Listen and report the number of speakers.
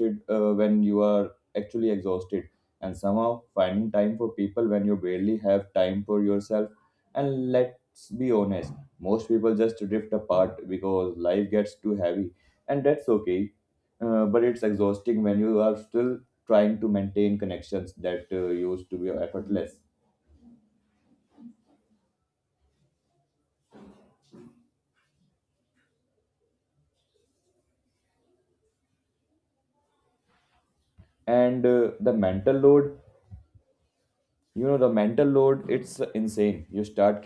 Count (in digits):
1